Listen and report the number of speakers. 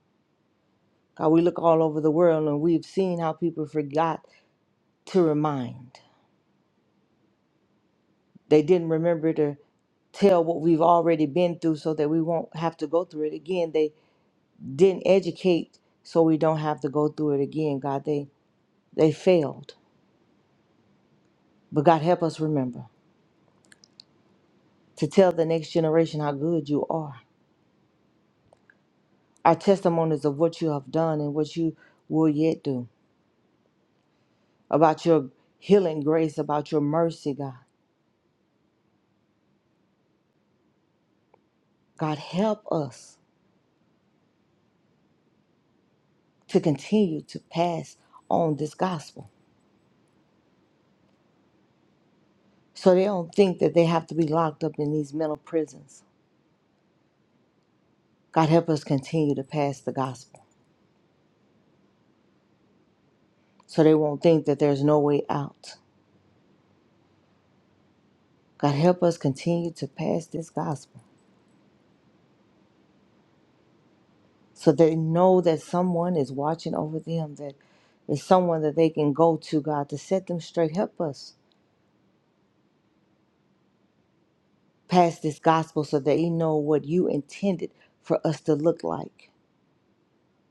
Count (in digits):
1